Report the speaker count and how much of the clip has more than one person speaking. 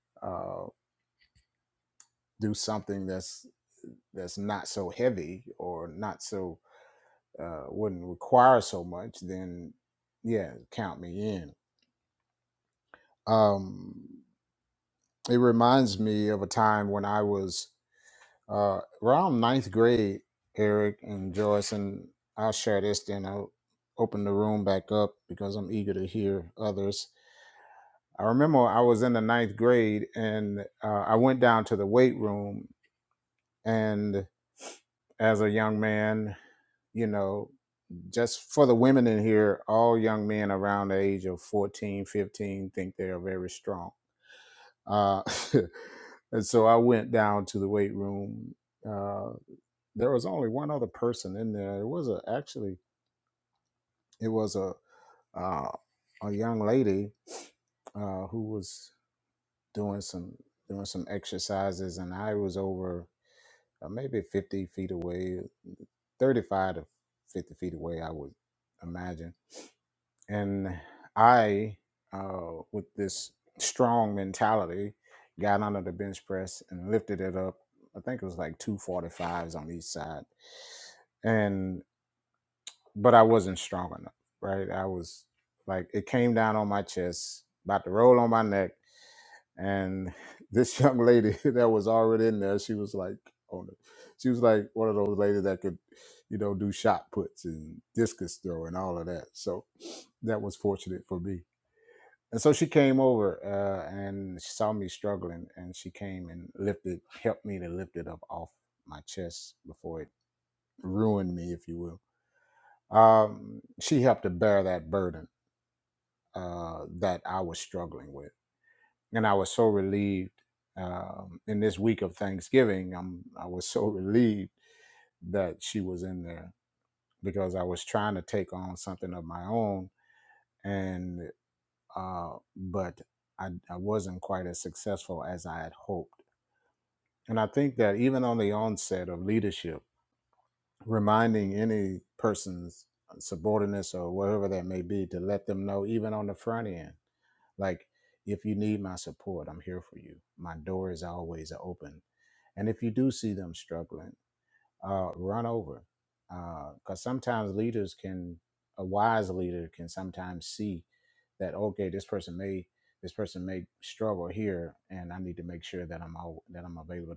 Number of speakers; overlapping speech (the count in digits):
1, no overlap